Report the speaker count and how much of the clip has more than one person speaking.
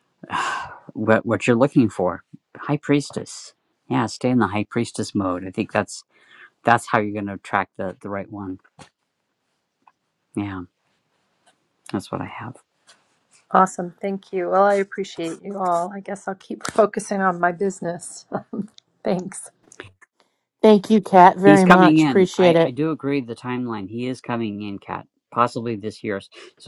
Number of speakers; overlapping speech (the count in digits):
3, about 5%